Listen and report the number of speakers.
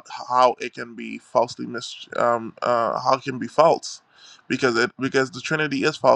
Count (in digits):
1